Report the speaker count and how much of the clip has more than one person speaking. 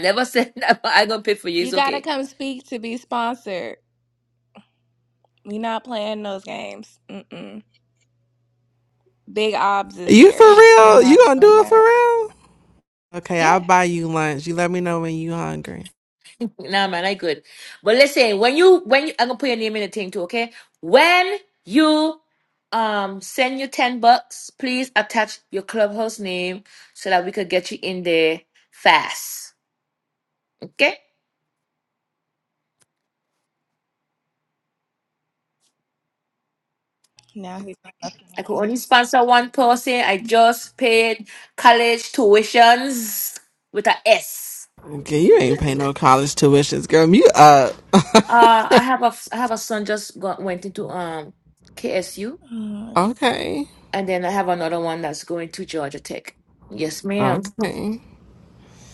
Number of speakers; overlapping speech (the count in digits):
3, about 5%